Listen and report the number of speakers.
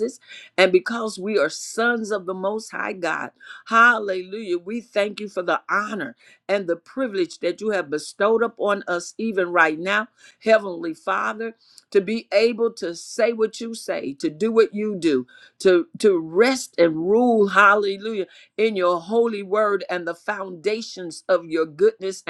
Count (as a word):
one